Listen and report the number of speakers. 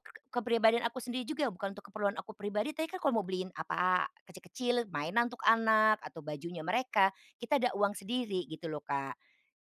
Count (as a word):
one